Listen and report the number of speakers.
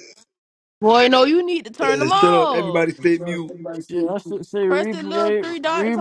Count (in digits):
3